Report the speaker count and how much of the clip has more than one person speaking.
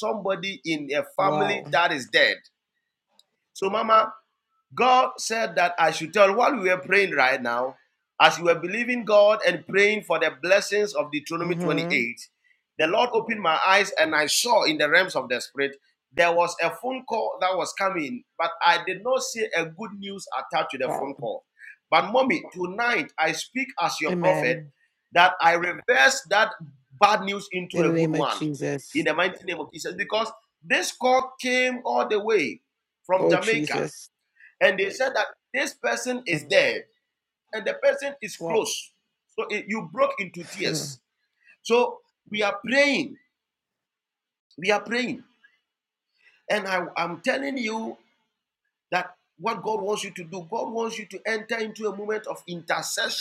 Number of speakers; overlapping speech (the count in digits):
2, about 7%